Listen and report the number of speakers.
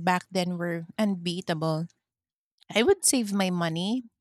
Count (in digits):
1